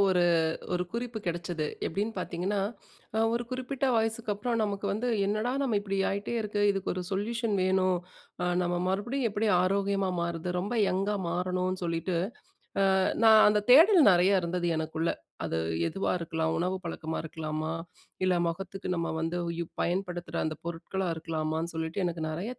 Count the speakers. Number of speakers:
one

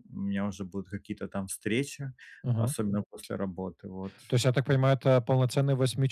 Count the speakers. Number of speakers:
two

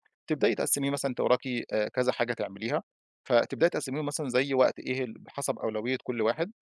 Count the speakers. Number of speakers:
one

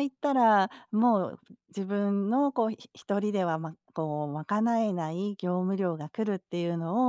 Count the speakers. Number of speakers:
one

